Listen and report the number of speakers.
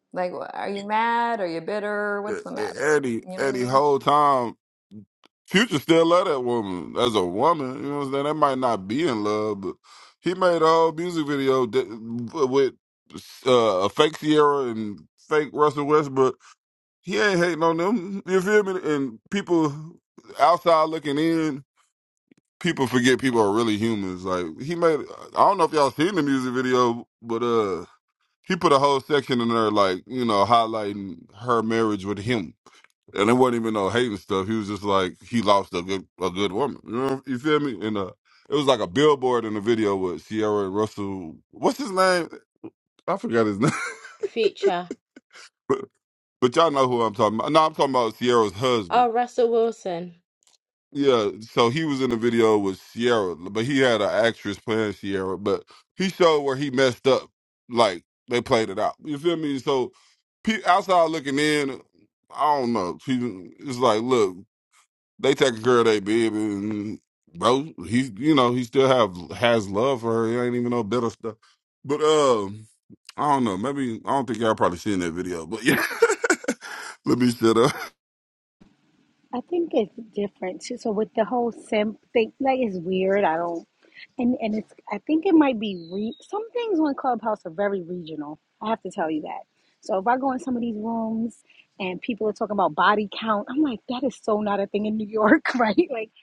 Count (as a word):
four